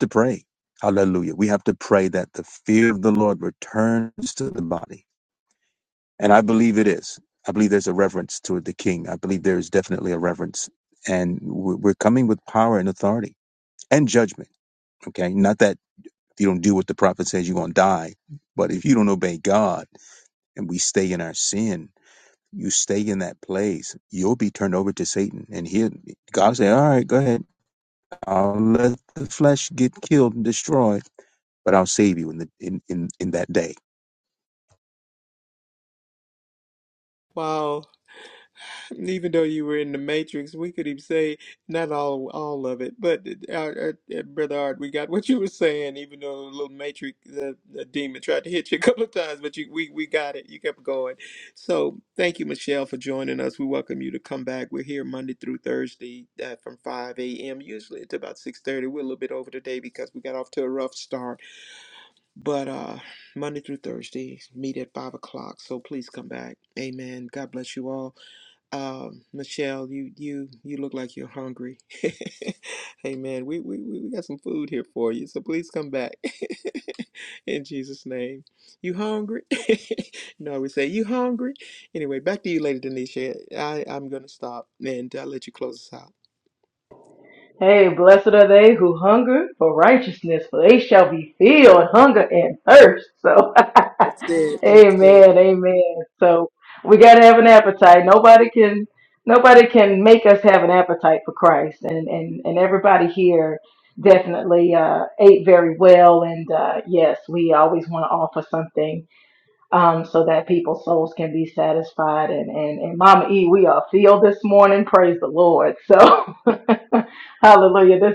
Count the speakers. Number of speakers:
3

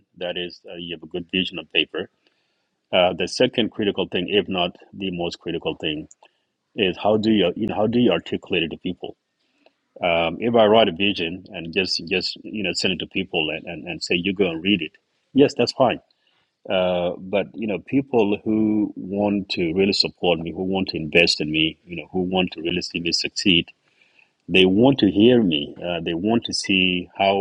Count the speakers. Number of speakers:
1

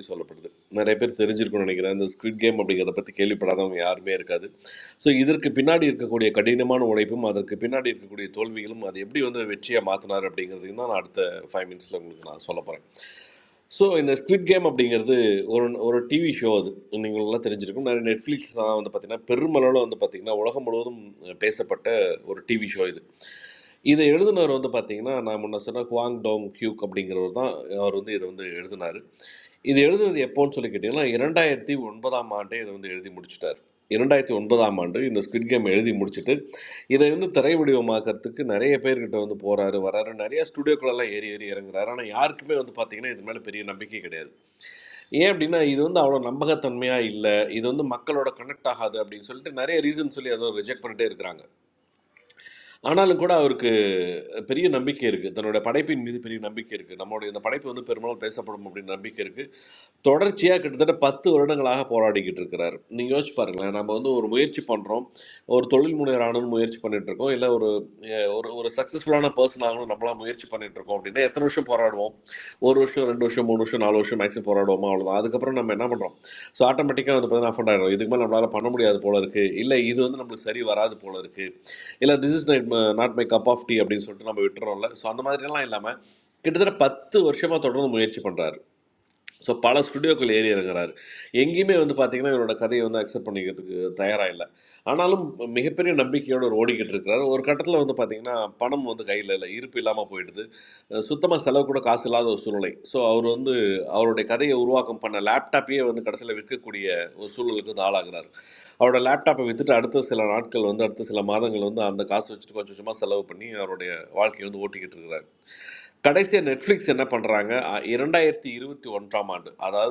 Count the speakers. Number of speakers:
1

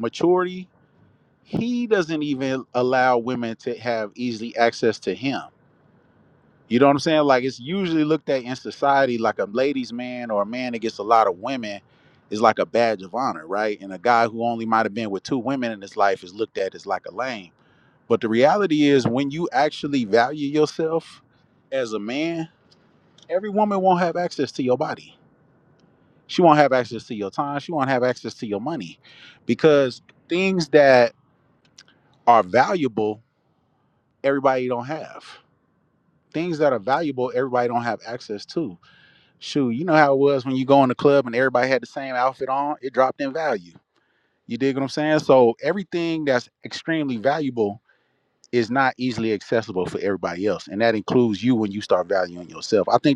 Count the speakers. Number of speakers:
1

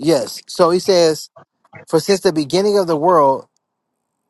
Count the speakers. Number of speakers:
1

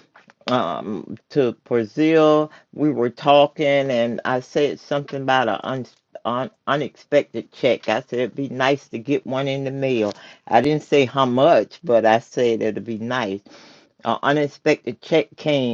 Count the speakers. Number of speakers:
1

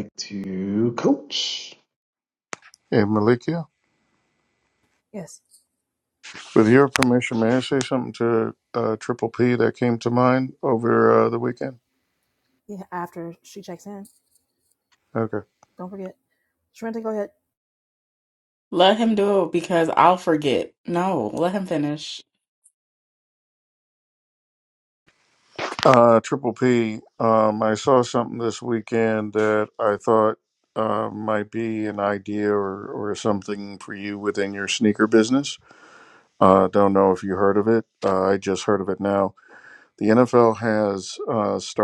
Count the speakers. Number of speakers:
4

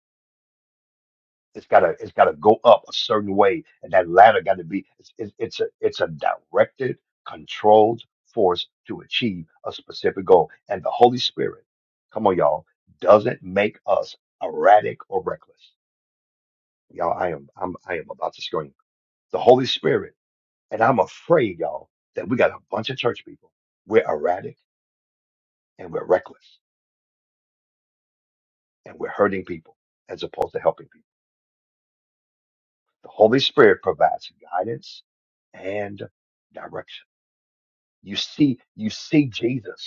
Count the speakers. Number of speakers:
1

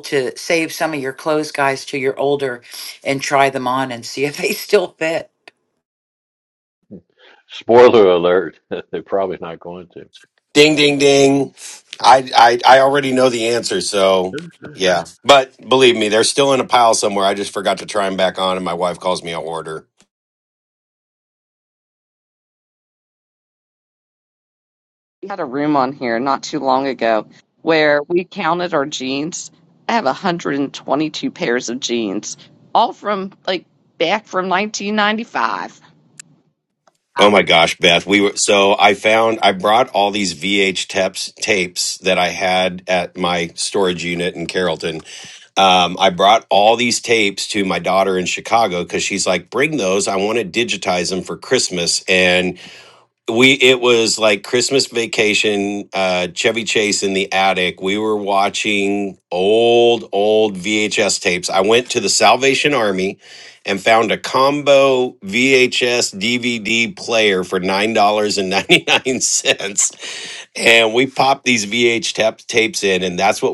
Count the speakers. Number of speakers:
4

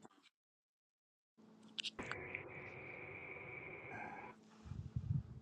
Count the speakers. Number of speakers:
0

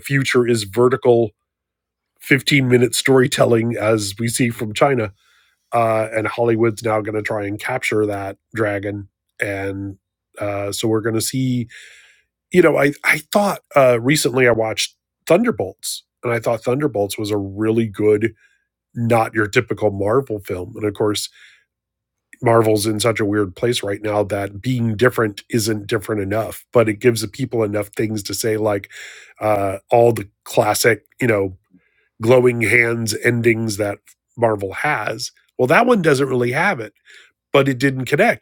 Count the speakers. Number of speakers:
1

